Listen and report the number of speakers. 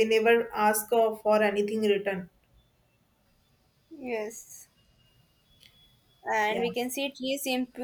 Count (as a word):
two